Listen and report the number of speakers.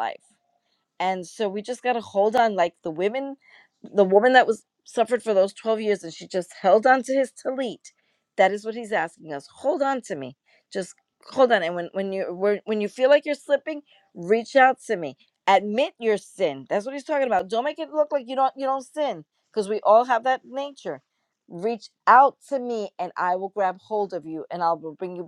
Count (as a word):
one